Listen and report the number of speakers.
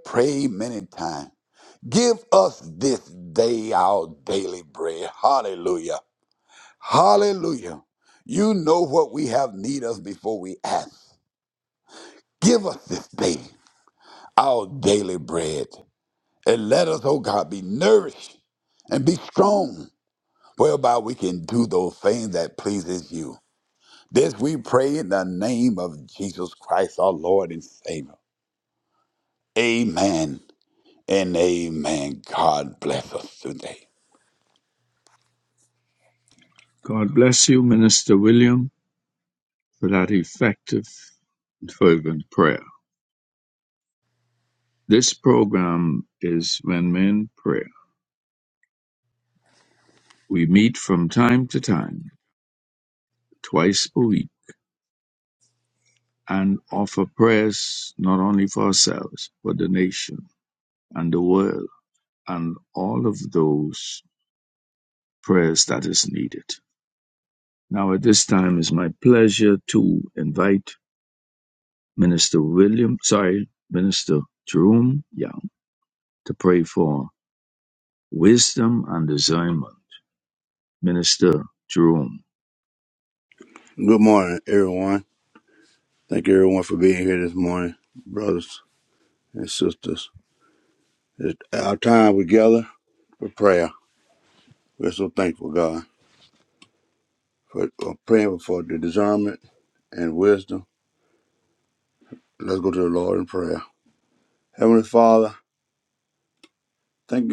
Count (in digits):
3